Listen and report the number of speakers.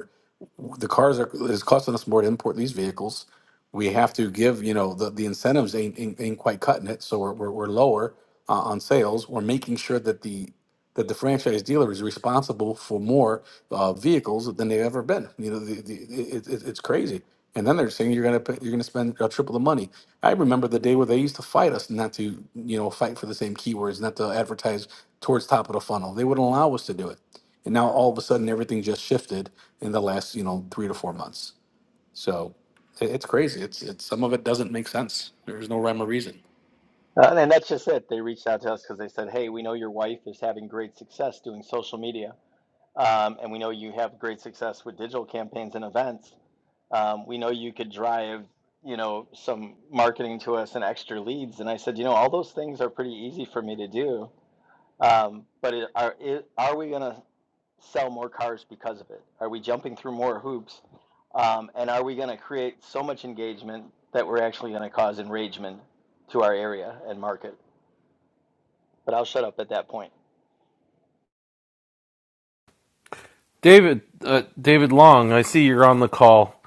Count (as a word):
three